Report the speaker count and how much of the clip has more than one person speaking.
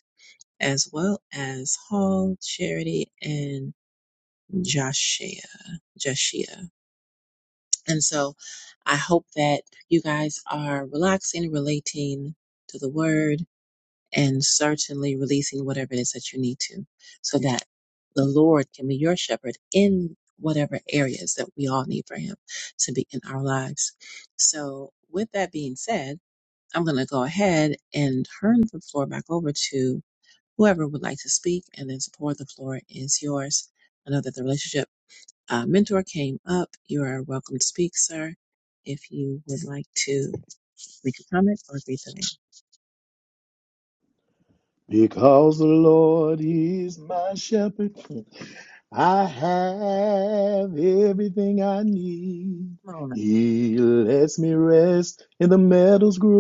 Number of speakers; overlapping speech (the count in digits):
2, no overlap